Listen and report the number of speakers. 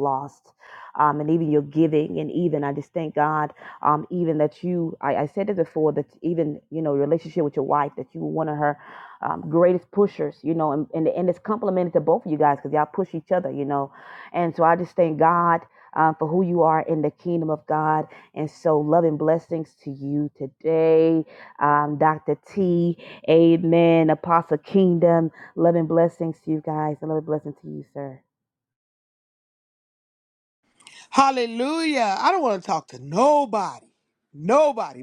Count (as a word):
two